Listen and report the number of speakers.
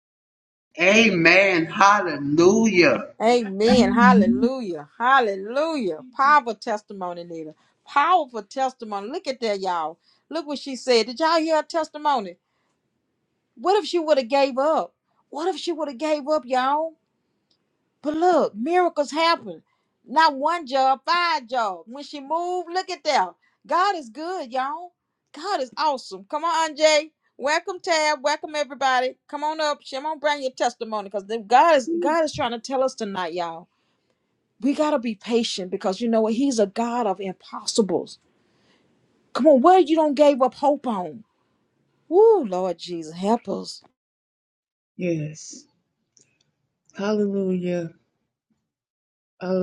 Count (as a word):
three